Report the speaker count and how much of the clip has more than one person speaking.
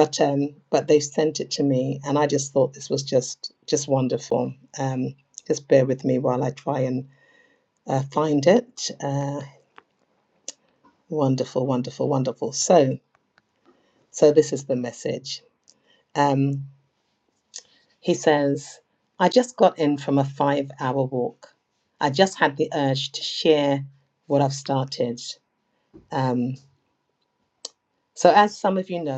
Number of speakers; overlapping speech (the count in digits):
1, no overlap